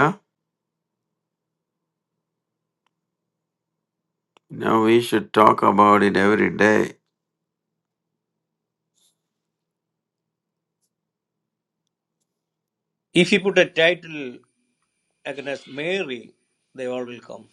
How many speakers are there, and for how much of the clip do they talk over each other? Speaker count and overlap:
2, no overlap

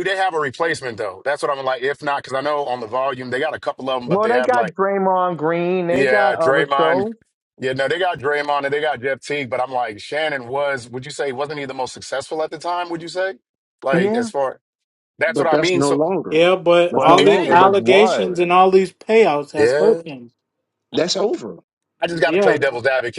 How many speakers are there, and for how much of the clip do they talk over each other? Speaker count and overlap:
4, about 23%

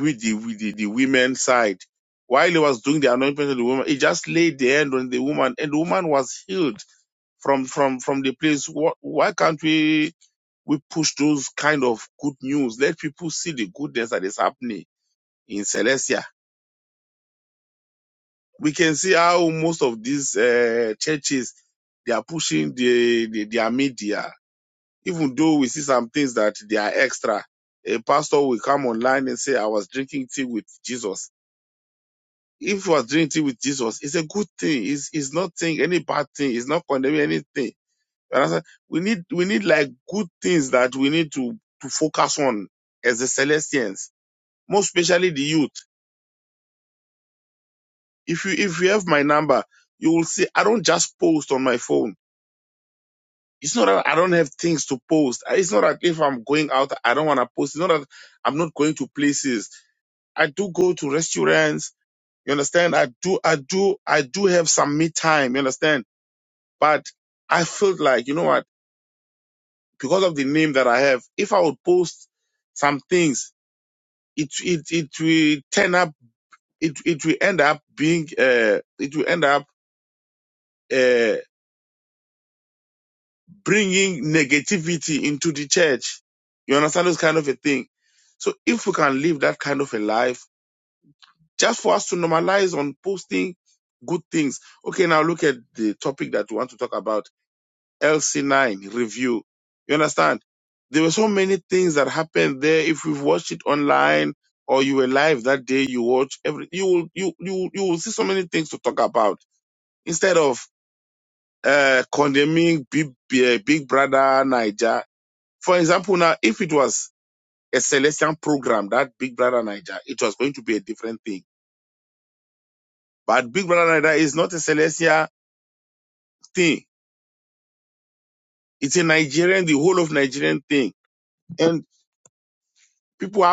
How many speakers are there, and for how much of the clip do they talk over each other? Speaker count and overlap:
1, no overlap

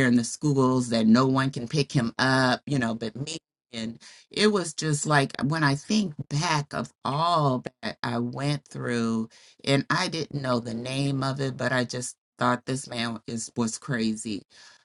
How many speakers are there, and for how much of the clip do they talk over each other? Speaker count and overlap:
1, no overlap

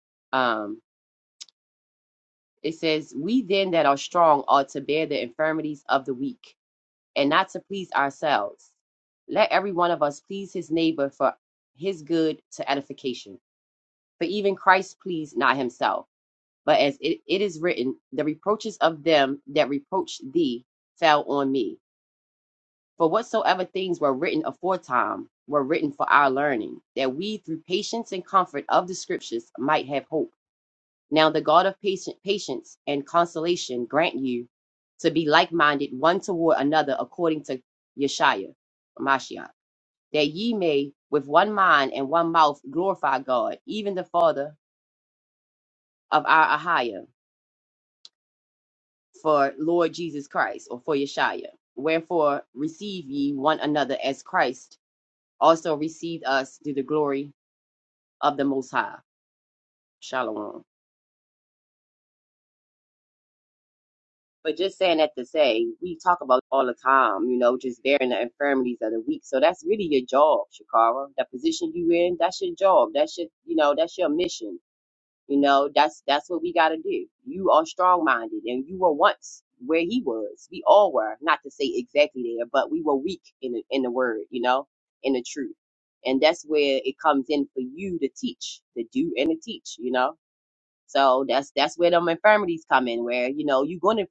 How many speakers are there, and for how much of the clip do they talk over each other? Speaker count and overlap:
1, no overlap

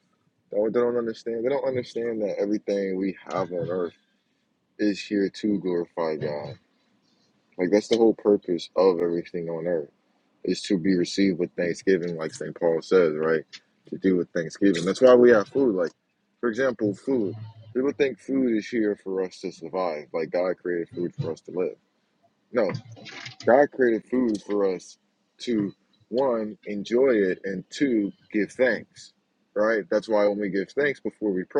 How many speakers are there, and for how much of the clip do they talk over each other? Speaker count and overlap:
1, no overlap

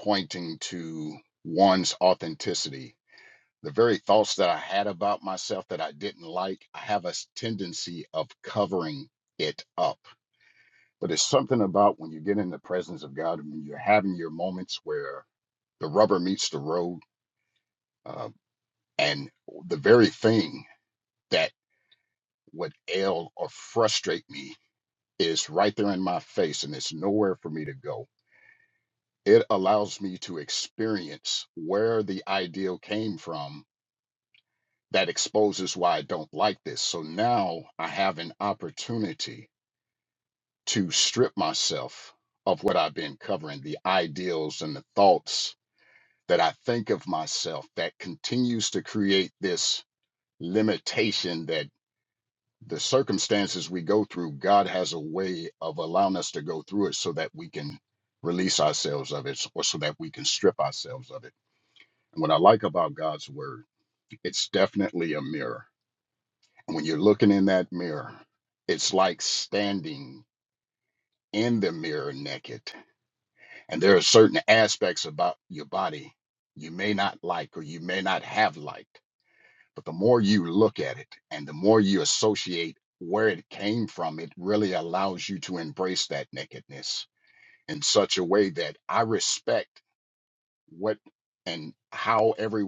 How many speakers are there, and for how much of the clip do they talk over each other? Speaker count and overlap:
1, no overlap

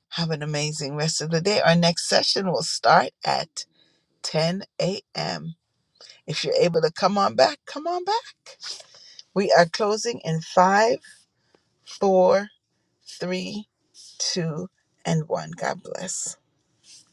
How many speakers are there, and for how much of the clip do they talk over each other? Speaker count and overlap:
1, no overlap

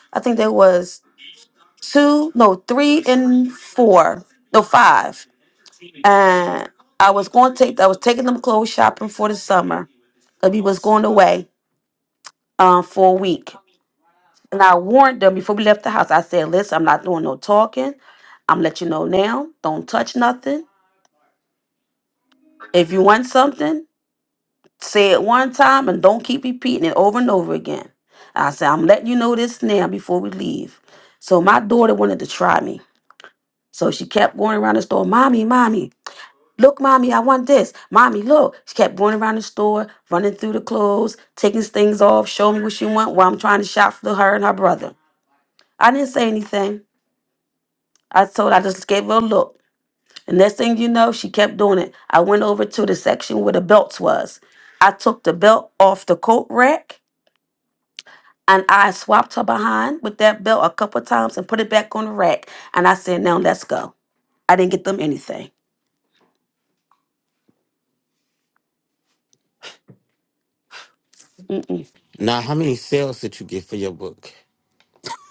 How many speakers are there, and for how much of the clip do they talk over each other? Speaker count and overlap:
2, no overlap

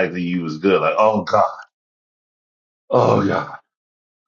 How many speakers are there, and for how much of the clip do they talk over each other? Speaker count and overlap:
1, no overlap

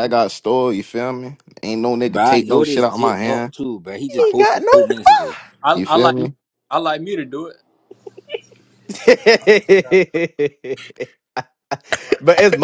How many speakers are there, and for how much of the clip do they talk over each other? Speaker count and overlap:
4, about 23%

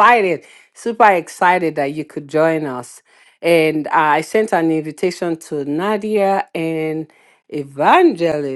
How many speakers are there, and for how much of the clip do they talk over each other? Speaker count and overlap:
1, no overlap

